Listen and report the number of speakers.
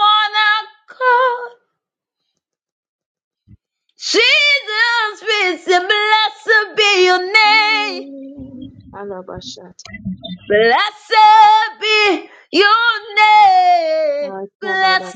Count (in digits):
2